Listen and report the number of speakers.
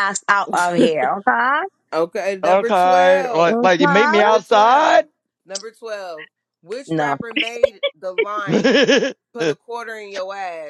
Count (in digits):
3